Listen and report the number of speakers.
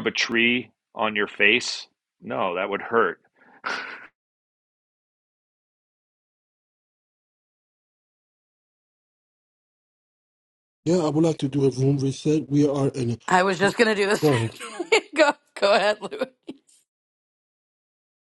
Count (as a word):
three